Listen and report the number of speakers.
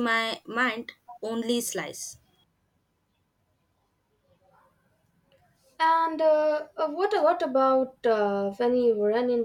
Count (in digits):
2